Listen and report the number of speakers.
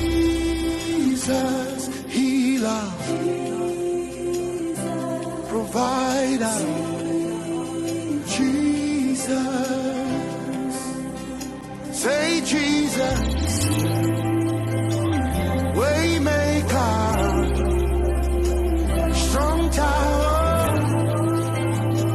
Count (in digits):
1